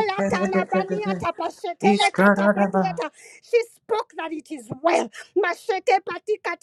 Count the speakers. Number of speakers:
2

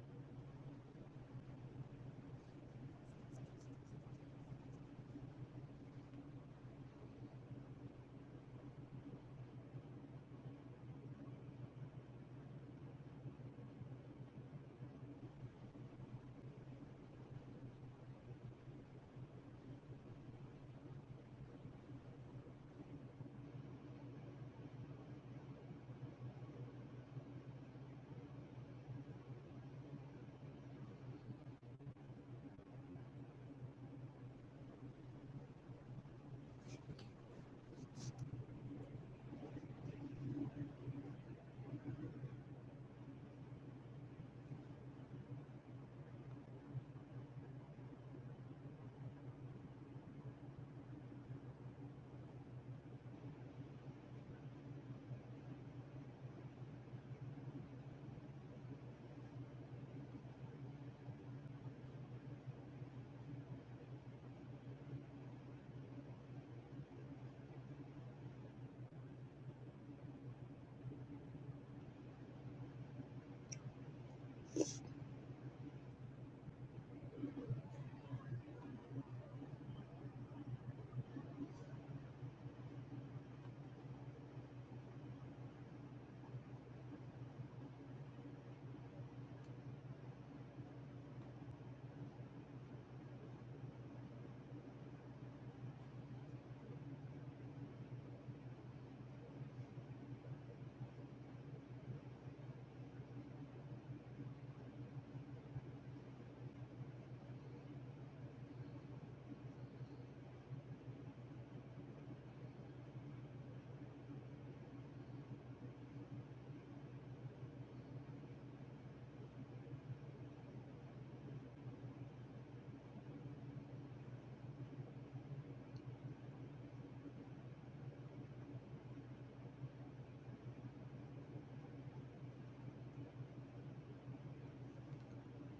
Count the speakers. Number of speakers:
0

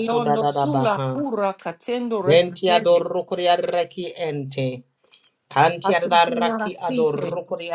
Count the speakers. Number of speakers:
2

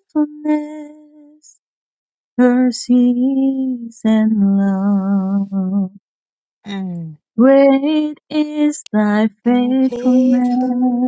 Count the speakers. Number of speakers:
2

